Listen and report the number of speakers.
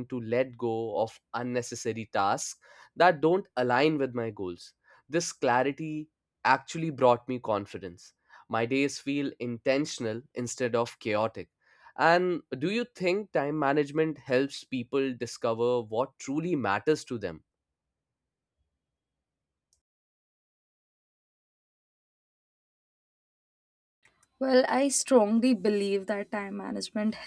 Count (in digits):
2